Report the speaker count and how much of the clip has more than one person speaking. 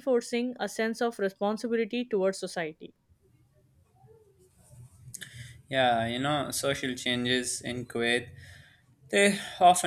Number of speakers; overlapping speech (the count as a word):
two, no overlap